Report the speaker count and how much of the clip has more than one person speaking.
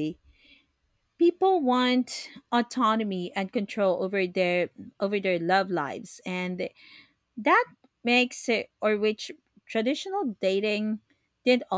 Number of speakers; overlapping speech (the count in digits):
1, no overlap